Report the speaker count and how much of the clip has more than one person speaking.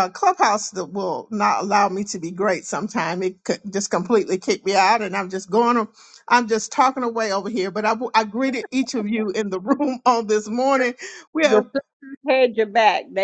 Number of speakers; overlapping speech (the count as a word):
two, no overlap